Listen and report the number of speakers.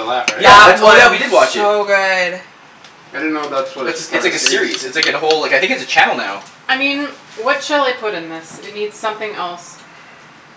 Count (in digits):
4